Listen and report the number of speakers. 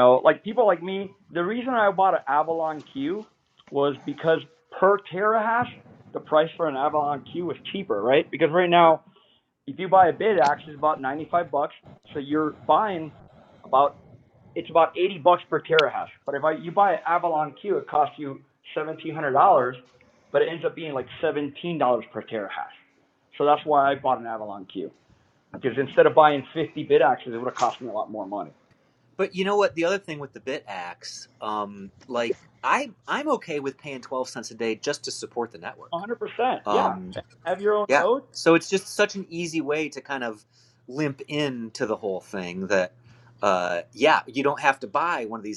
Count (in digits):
2